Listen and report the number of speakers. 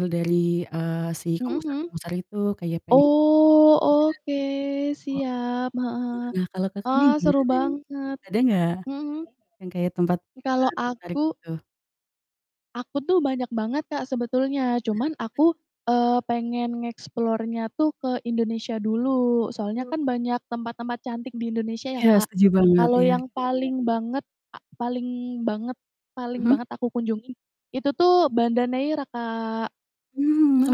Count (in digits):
2